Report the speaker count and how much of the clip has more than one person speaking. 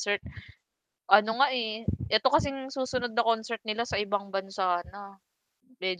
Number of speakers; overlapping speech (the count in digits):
1, no overlap